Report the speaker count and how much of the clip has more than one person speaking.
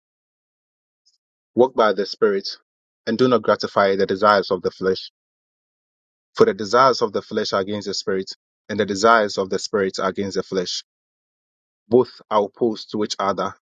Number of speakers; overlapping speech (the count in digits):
1, no overlap